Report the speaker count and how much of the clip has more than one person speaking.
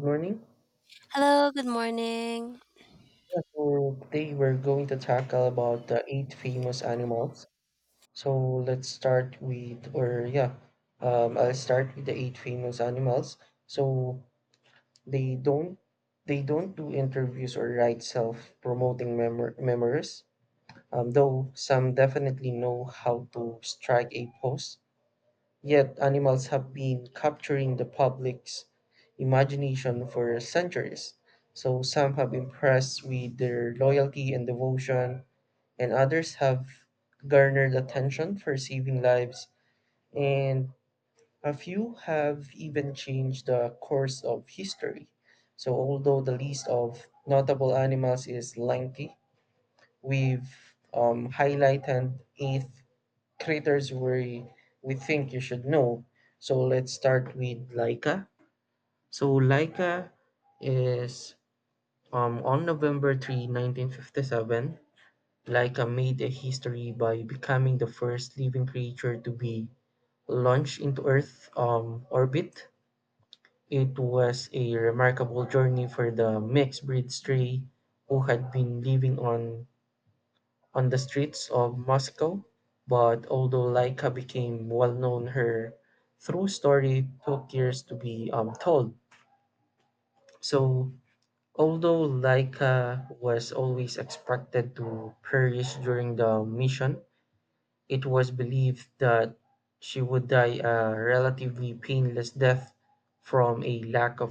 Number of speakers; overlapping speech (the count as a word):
two, no overlap